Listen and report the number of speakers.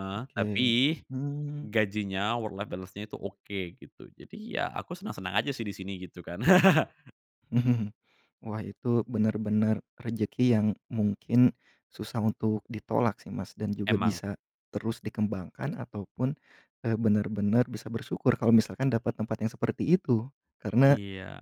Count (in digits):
2